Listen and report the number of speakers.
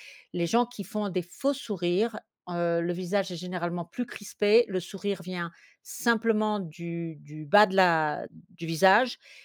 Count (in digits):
1